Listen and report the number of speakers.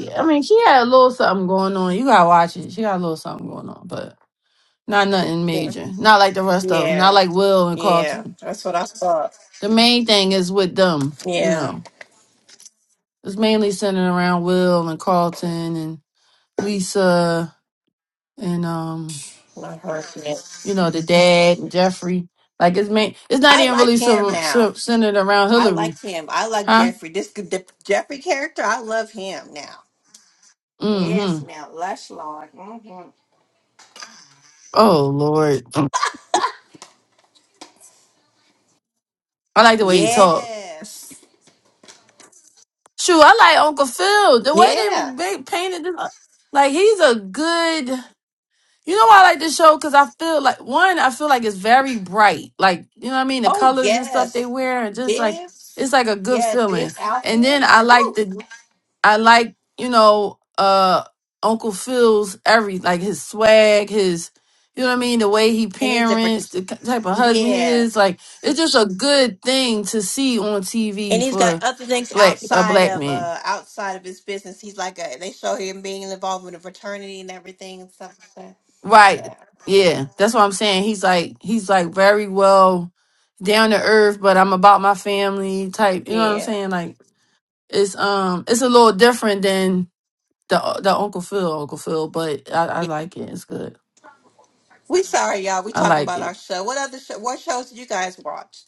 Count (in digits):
2